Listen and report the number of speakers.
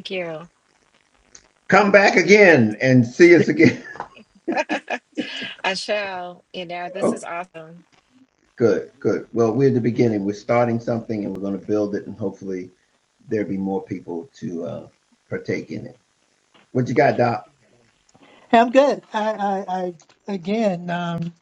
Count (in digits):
3